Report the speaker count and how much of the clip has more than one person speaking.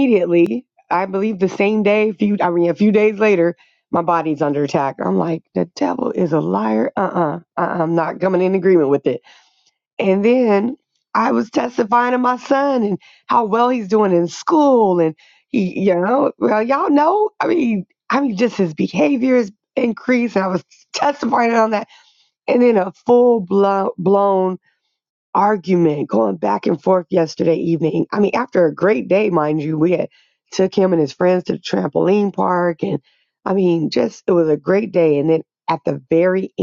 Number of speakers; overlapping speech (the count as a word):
one, no overlap